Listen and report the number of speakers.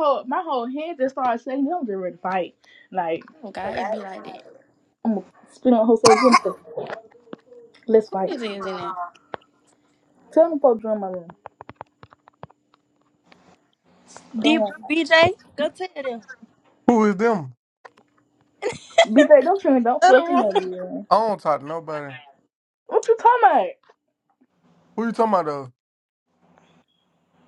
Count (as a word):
four